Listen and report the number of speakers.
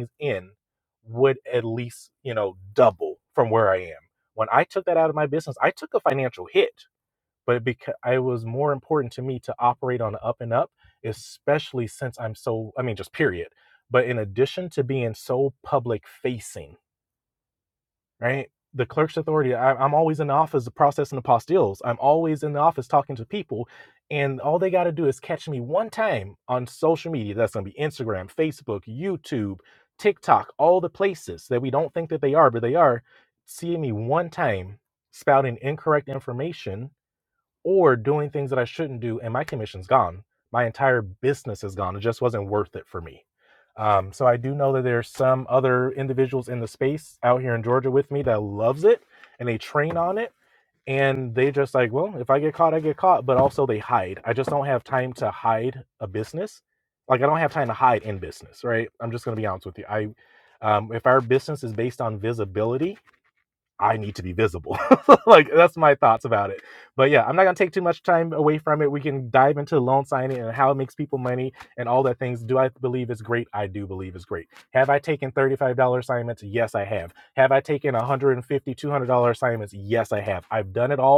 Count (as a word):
one